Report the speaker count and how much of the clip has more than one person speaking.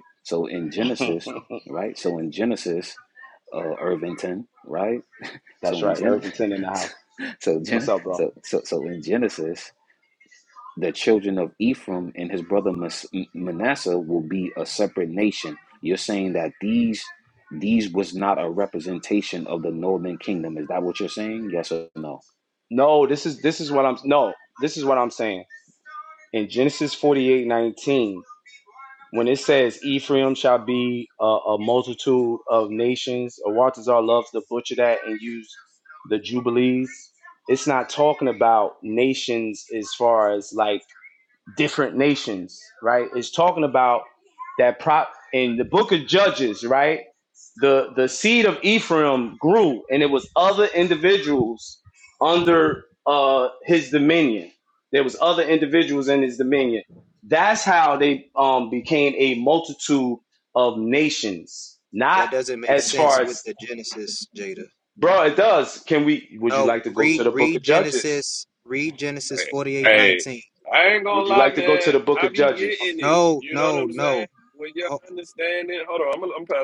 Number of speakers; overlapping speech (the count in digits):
4, about 10%